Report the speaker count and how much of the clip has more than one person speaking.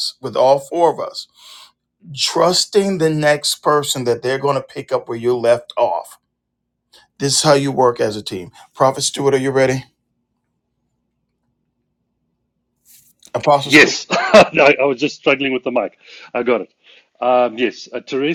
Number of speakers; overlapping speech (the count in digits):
2, about 2%